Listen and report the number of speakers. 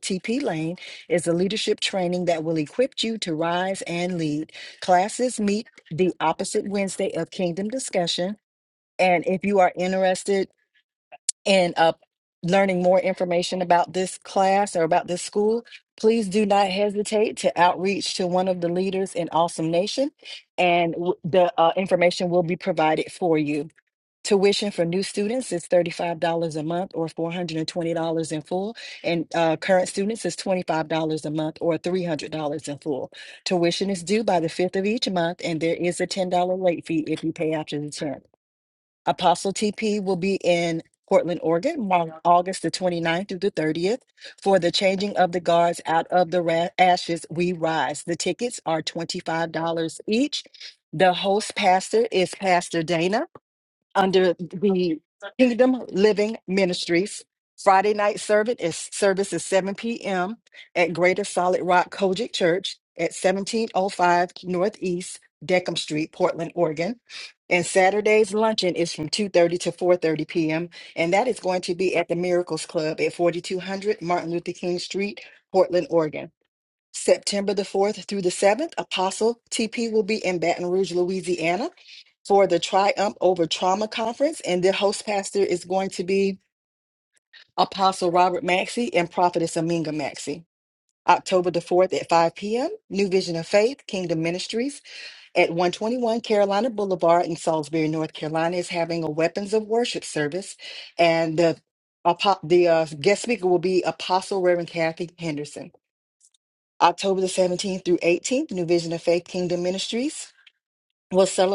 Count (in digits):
1